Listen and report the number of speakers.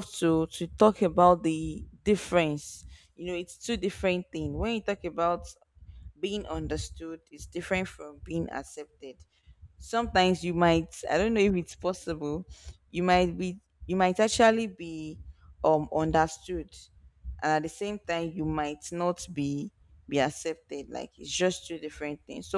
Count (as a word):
one